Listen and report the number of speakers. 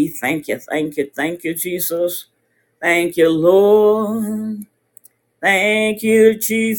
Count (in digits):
1